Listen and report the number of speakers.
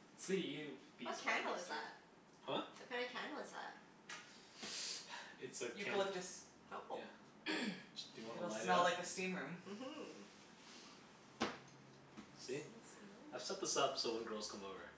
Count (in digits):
4